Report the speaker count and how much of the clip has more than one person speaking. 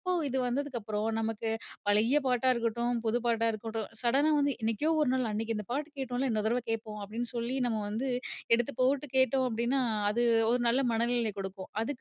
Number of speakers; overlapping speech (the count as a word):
one, no overlap